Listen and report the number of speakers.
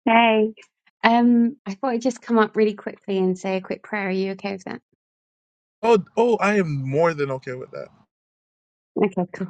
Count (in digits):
2